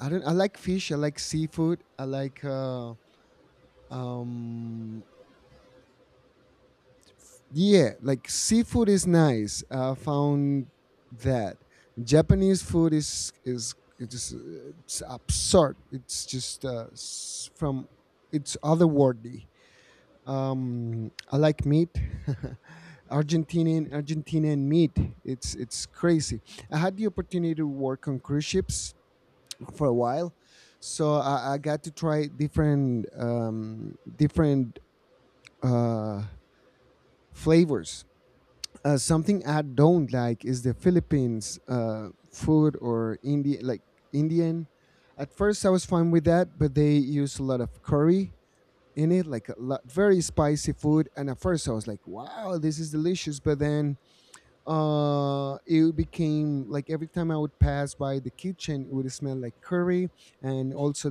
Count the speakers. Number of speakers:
1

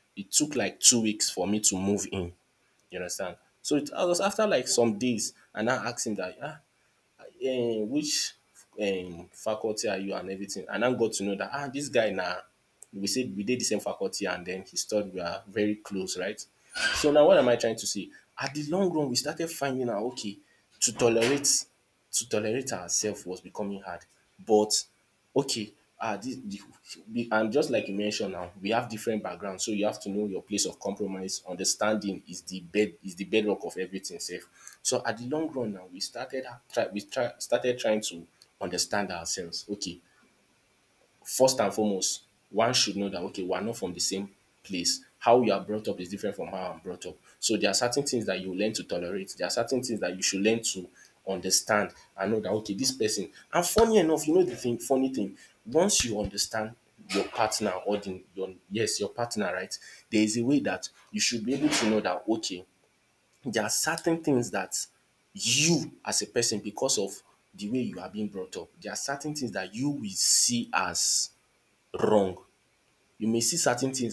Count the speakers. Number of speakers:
1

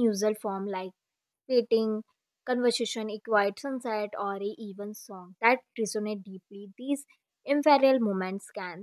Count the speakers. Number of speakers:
1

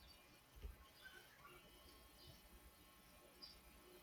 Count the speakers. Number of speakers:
0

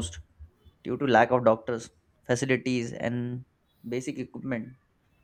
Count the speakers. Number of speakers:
1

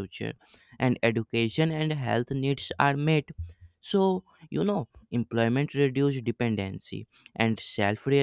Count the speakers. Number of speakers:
1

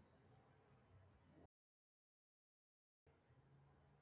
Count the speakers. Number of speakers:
0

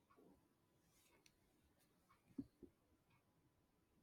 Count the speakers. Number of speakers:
0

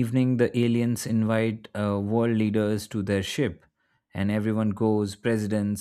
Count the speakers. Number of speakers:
1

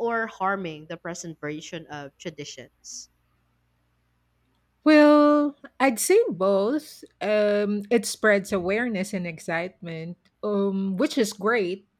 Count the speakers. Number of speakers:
2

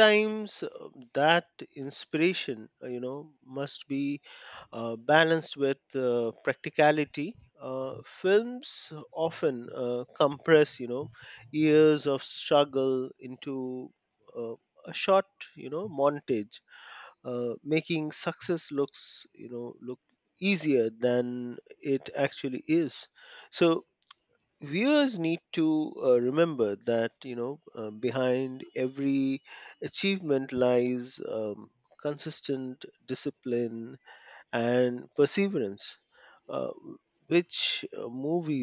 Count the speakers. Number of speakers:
1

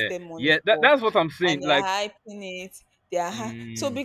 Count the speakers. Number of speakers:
2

